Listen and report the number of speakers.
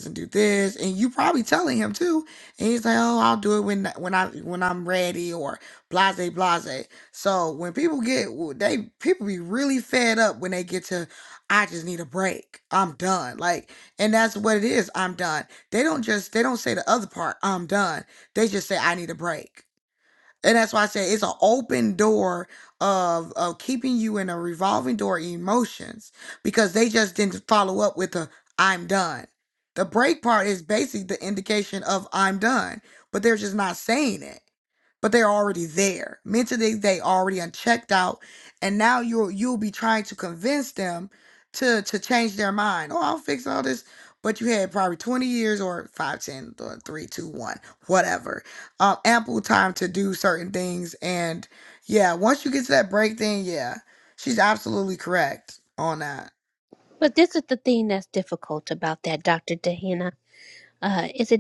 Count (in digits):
2